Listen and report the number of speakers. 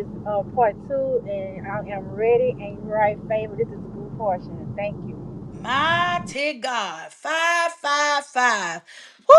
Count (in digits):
2